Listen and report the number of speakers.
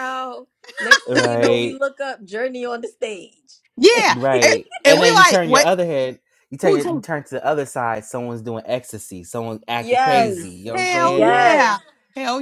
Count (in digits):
3